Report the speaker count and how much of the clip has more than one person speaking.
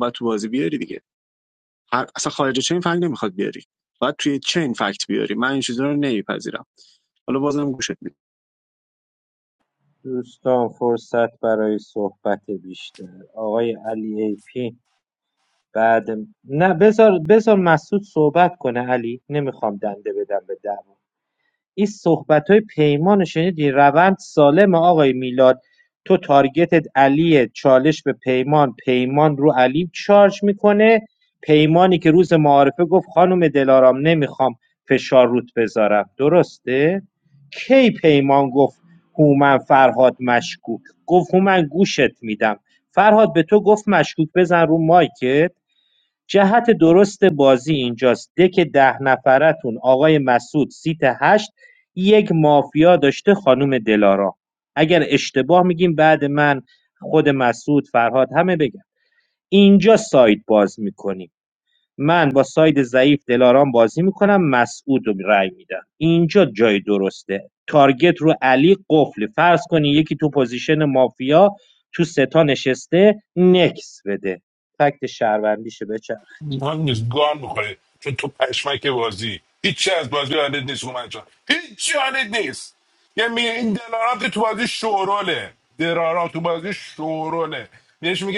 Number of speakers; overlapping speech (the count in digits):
3, no overlap